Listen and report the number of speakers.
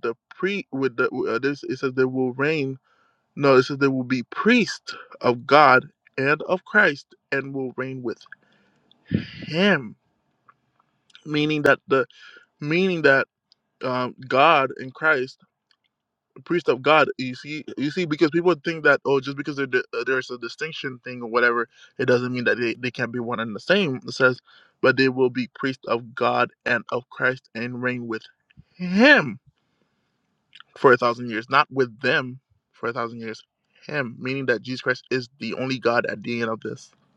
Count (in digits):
1